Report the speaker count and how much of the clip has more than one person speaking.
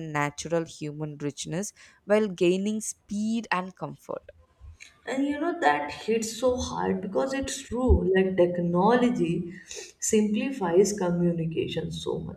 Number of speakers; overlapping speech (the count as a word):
two, no overlap